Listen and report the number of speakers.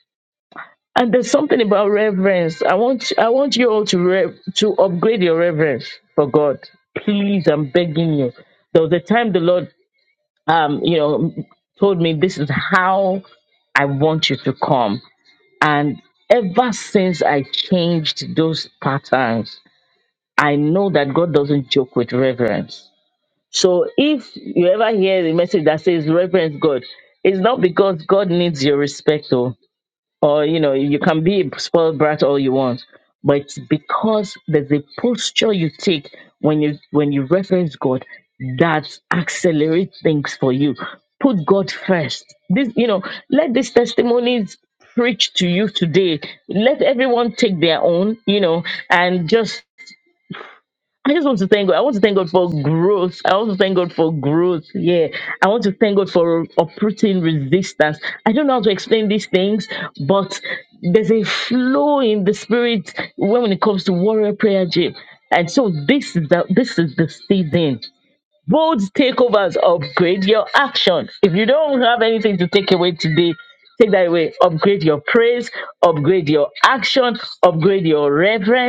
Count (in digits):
1